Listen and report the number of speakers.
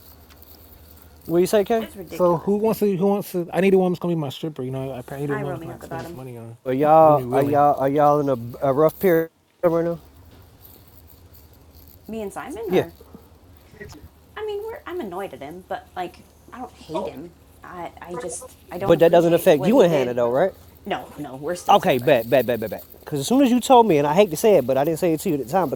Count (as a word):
three